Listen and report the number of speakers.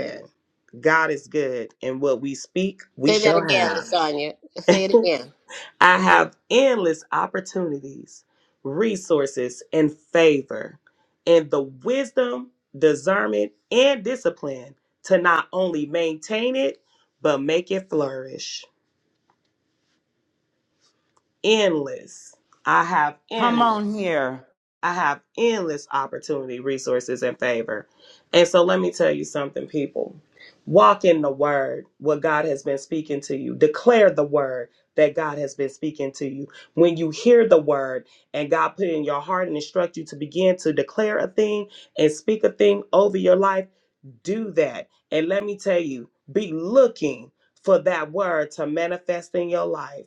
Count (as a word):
three